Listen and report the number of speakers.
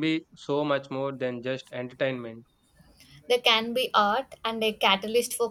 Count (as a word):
two